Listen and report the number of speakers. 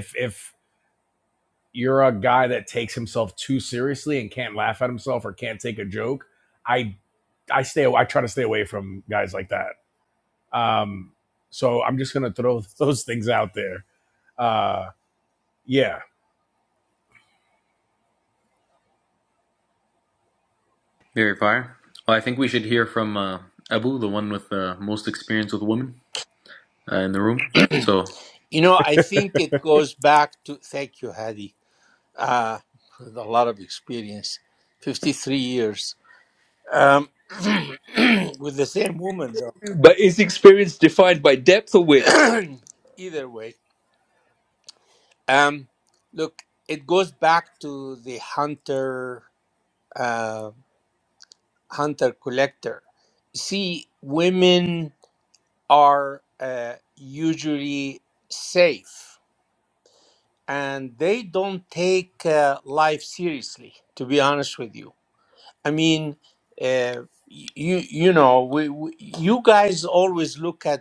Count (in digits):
4